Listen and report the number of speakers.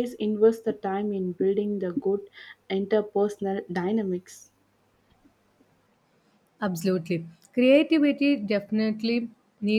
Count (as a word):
two